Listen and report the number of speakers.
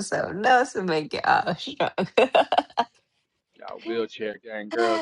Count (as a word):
two